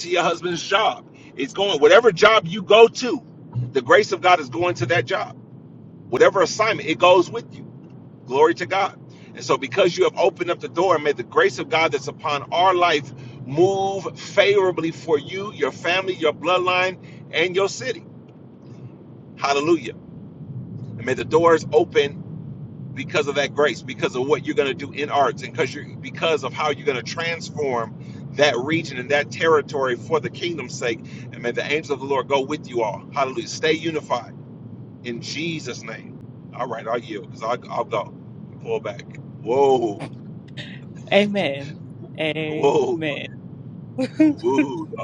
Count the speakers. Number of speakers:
2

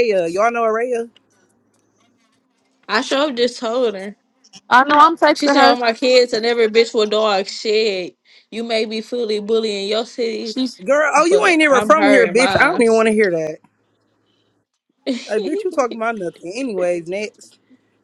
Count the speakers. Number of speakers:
3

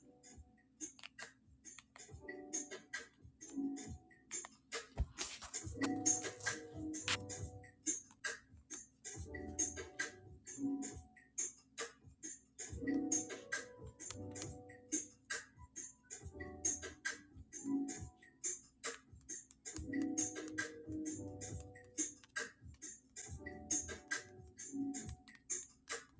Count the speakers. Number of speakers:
0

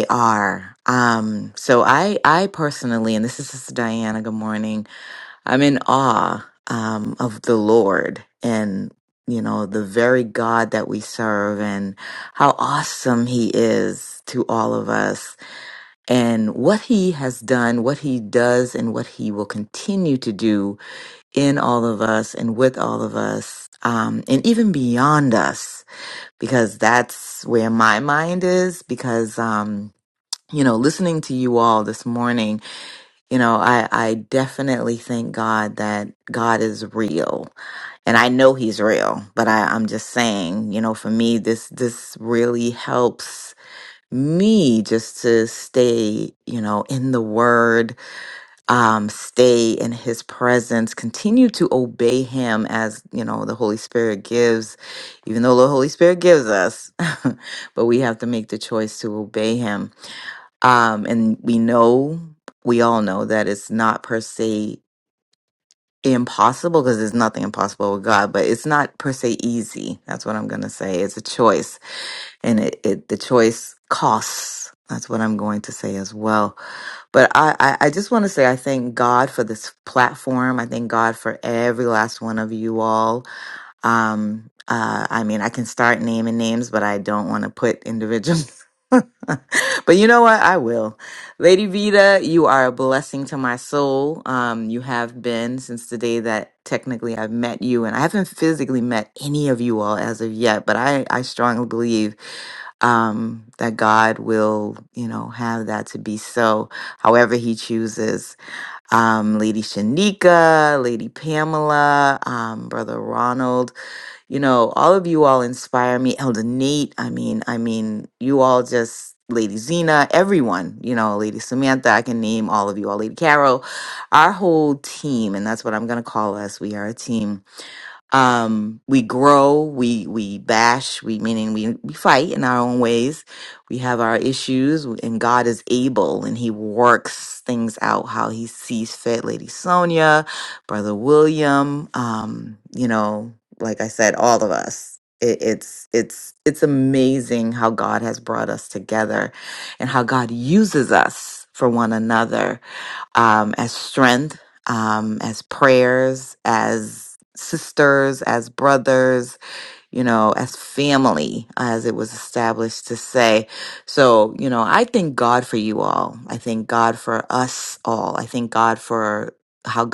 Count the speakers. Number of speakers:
1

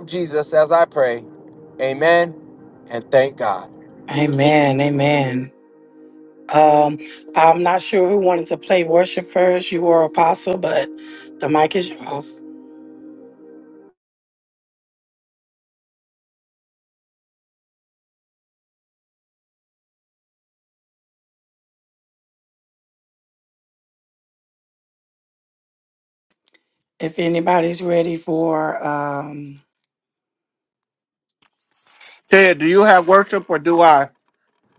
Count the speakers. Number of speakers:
3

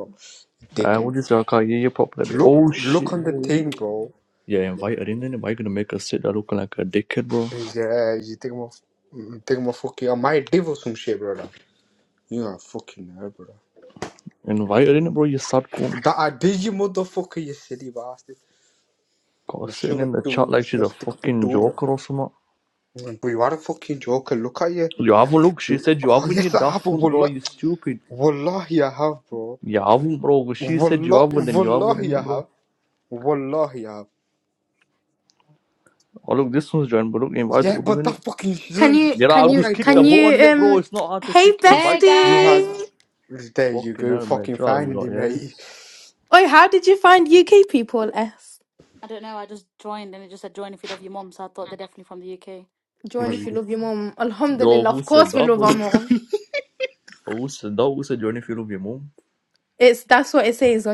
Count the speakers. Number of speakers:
4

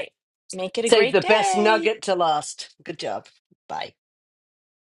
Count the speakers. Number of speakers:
2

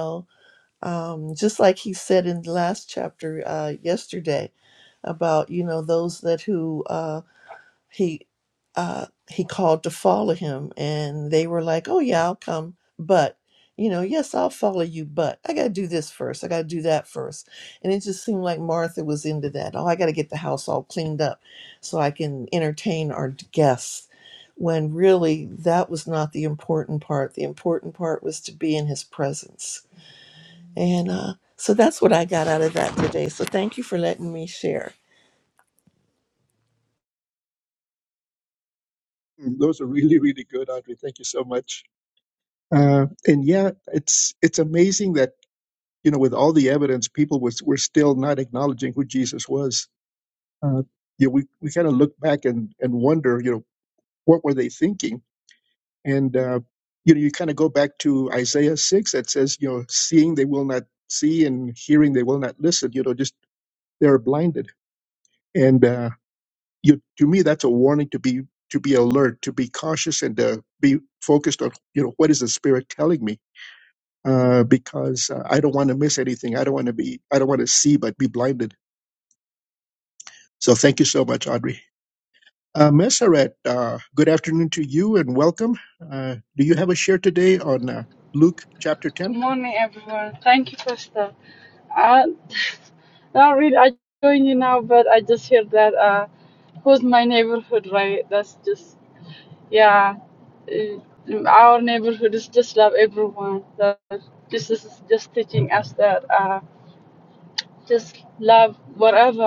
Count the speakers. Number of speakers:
3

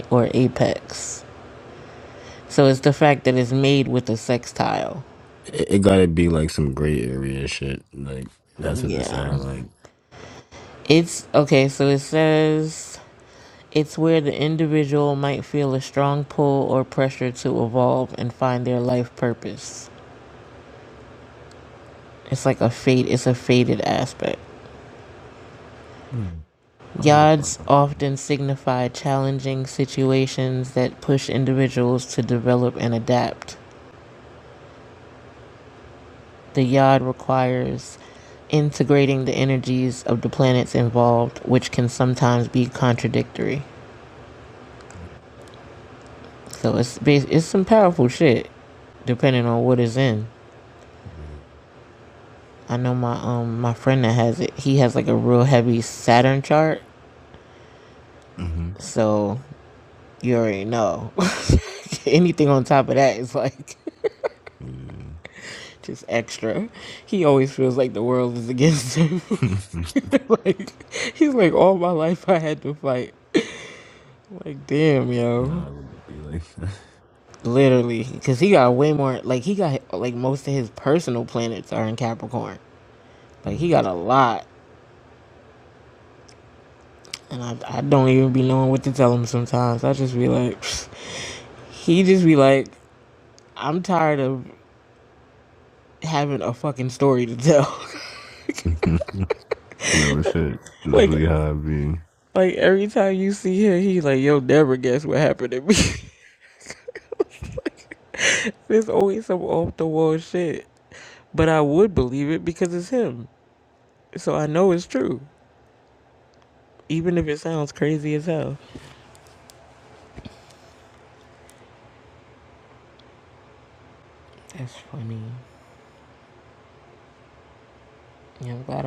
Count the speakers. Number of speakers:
2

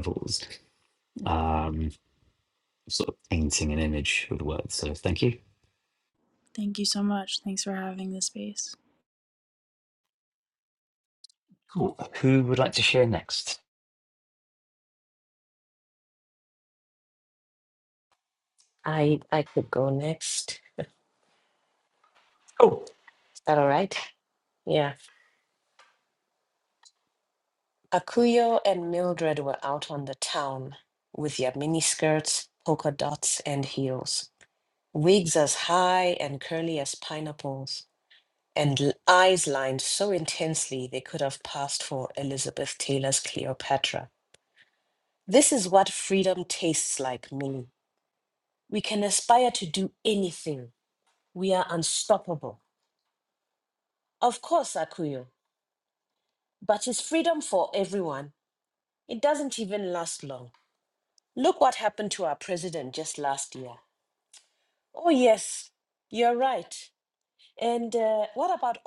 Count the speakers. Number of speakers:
3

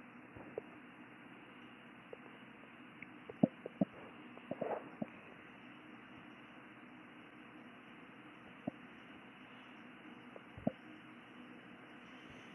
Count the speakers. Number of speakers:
0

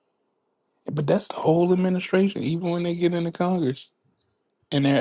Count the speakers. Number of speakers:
1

